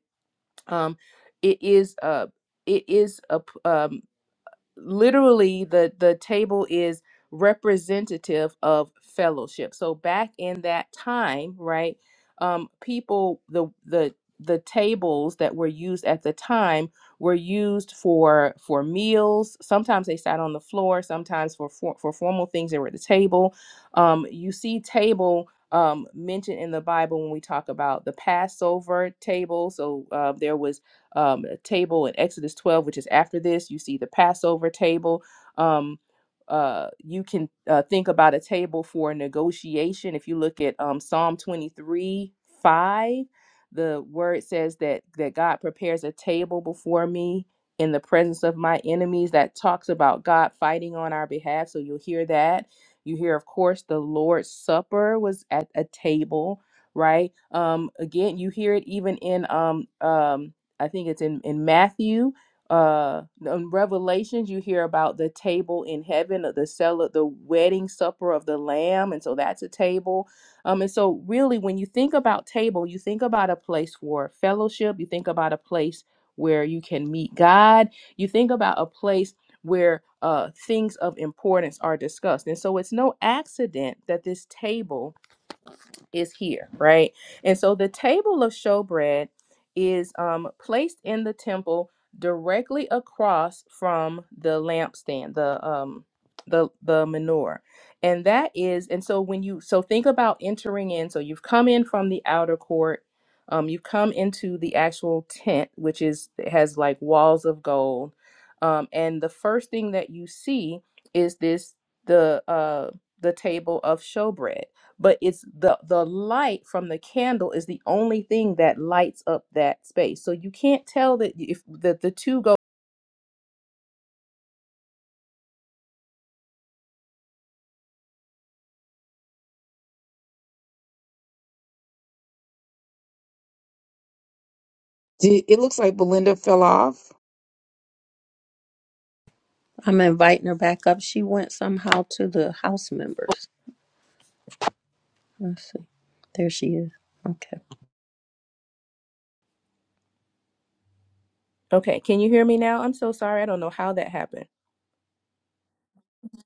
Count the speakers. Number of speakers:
3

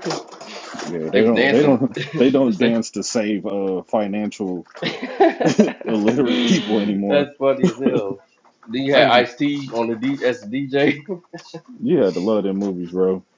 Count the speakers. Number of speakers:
2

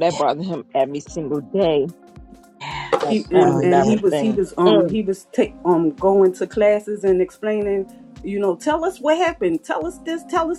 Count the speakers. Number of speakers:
3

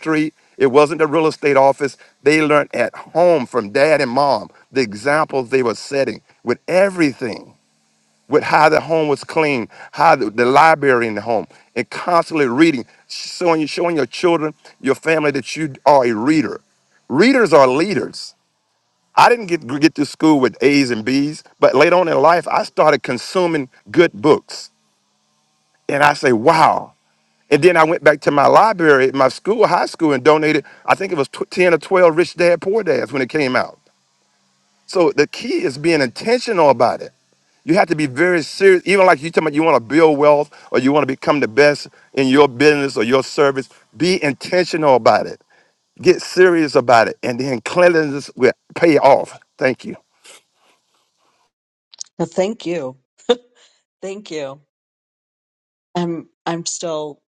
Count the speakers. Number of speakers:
2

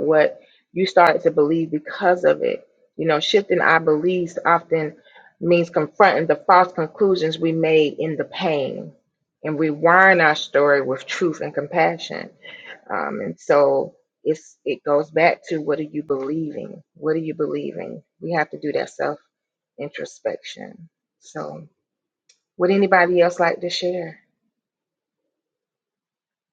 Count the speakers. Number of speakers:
1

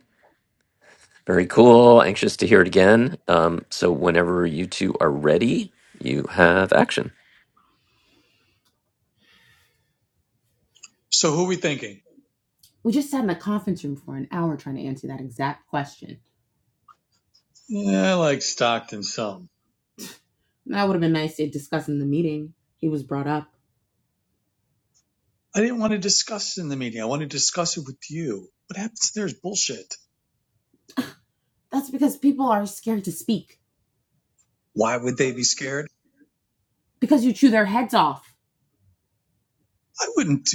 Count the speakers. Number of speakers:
3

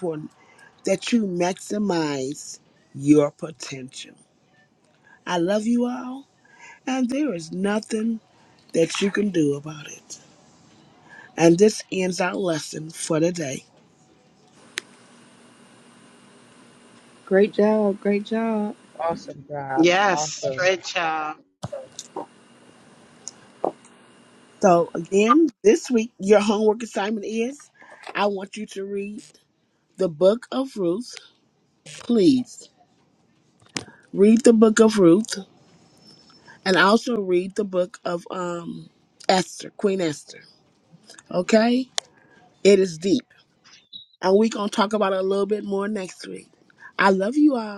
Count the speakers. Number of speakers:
4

